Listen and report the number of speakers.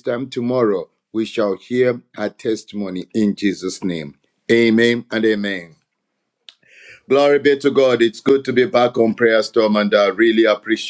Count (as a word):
one